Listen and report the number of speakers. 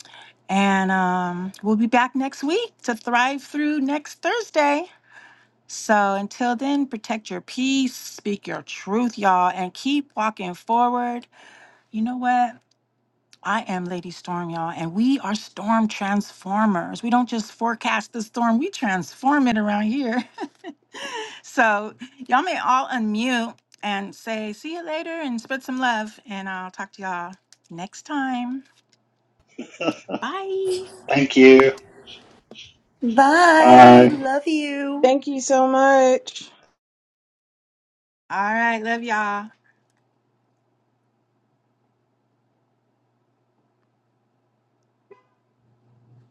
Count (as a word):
four